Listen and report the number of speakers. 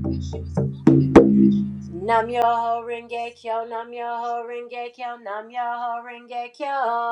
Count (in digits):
1